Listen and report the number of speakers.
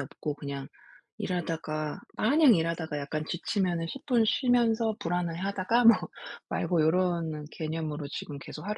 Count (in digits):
1